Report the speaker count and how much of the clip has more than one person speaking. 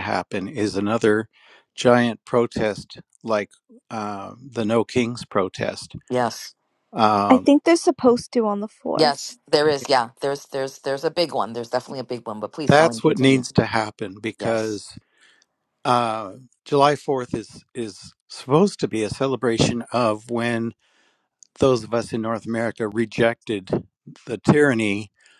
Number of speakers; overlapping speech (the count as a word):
three, about 5%